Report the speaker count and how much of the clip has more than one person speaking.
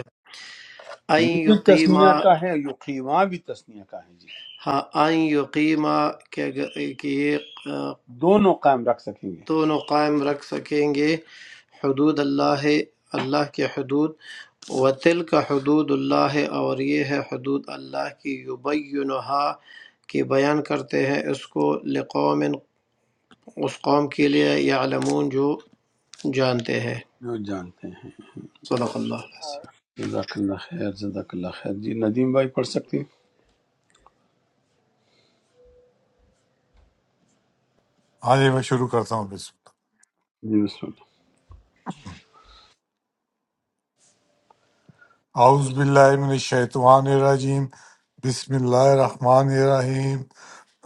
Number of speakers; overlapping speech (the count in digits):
3, about 2%